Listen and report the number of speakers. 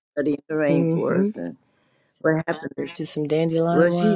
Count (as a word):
two